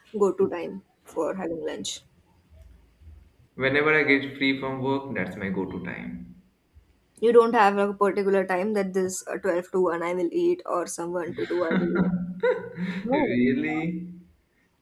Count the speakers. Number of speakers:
2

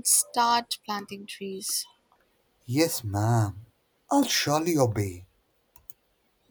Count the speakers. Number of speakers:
2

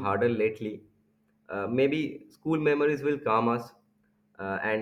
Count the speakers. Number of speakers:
1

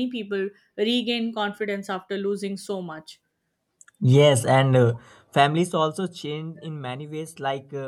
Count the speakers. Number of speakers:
2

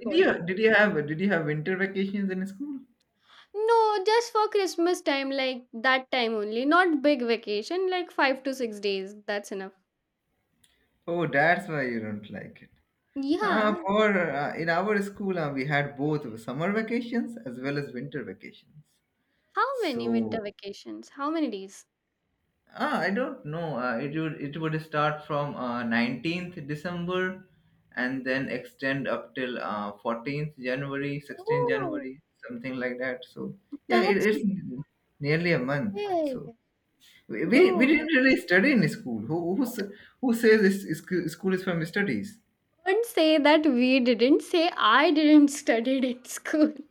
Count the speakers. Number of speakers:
2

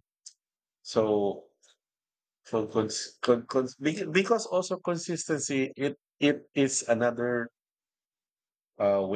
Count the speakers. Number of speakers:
1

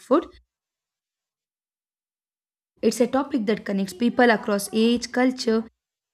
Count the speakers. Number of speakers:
1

